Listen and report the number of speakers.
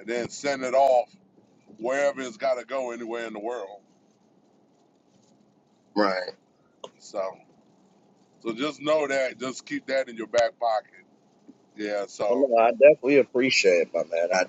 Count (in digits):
2